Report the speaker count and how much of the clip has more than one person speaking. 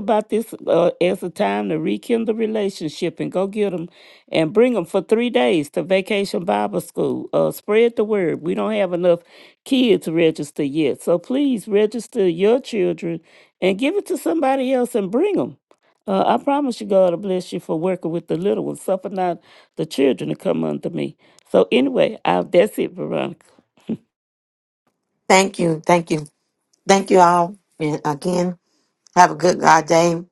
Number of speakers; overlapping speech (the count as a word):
two, no overlap